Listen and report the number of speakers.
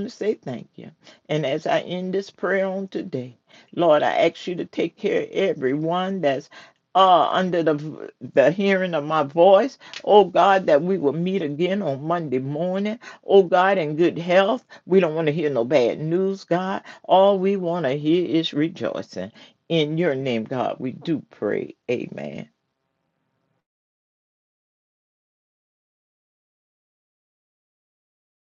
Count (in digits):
1